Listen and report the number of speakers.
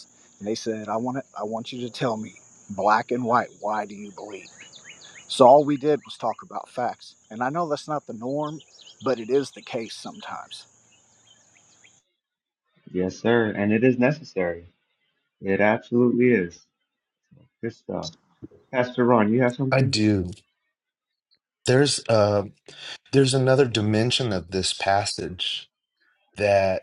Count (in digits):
3